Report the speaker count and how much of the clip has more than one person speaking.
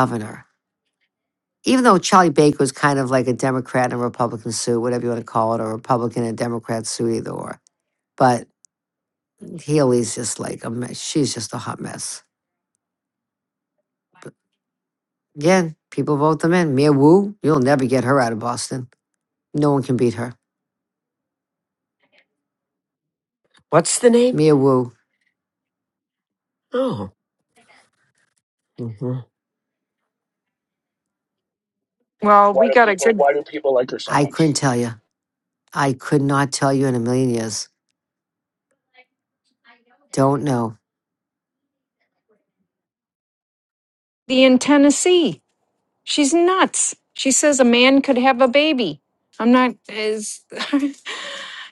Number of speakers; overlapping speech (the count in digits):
4, about 2%